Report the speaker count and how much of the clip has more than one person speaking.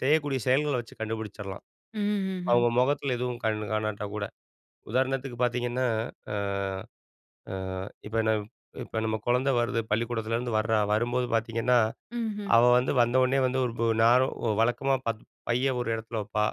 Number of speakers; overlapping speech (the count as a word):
two, about 1%